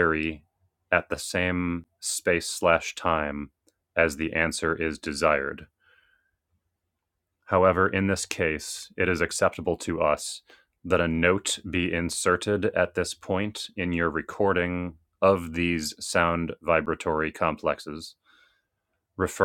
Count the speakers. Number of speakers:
one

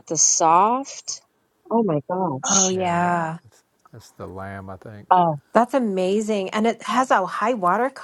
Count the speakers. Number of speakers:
three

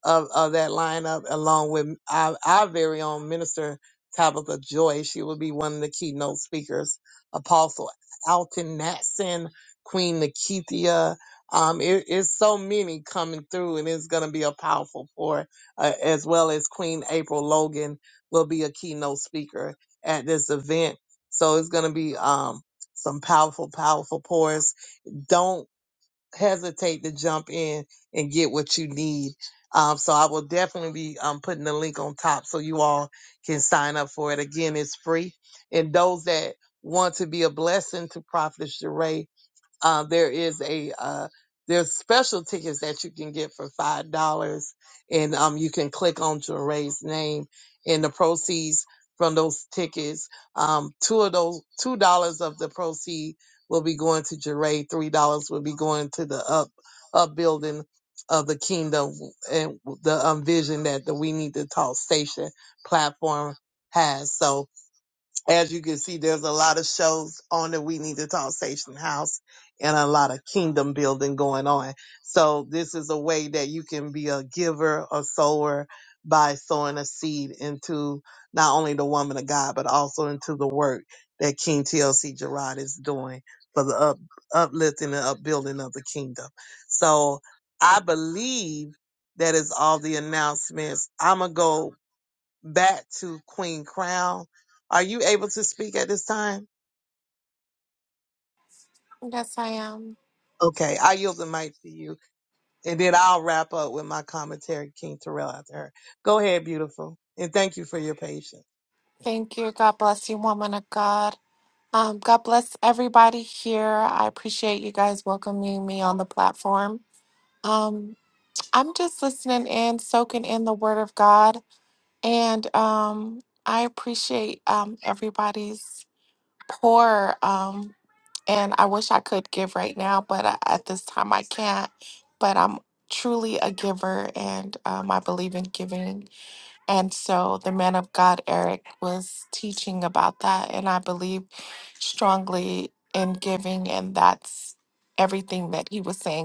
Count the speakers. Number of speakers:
two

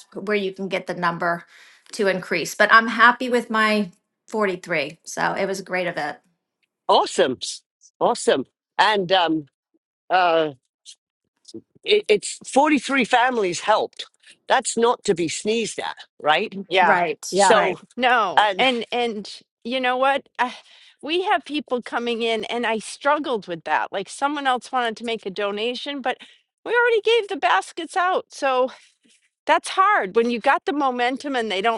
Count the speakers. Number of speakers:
three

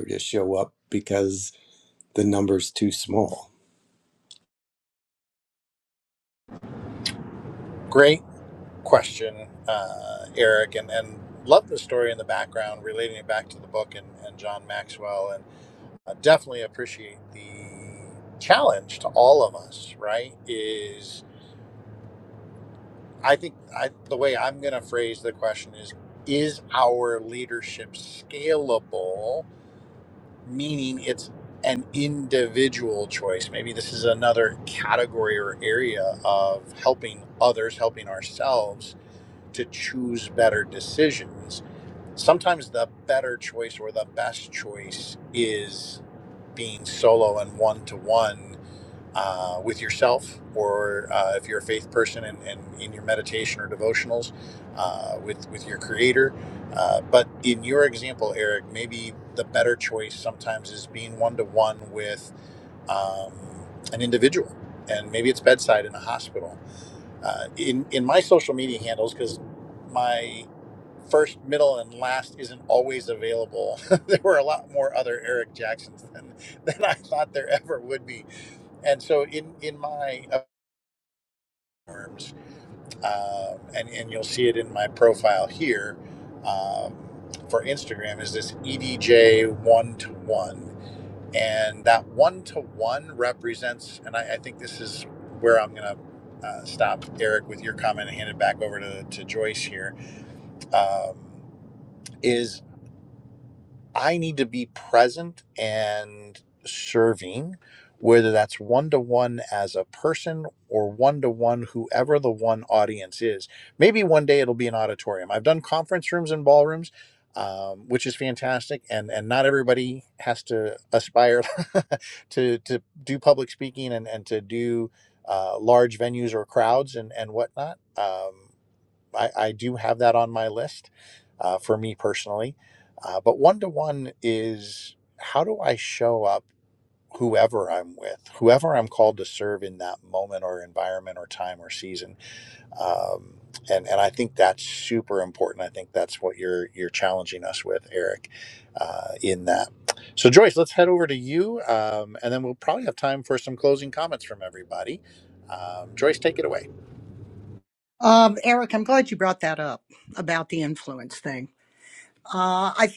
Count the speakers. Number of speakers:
three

